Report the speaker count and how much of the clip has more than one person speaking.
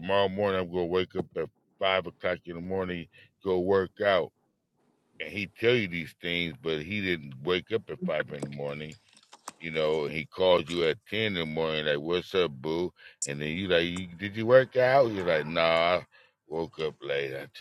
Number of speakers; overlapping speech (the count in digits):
1, no overlap